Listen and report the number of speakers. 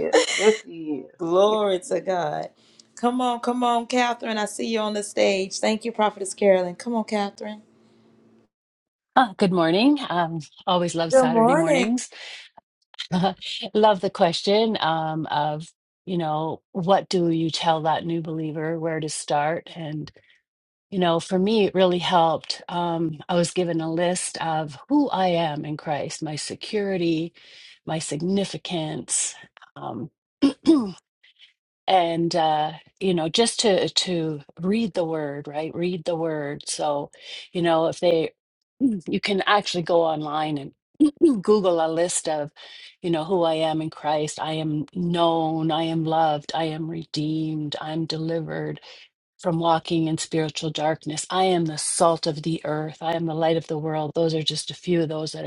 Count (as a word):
three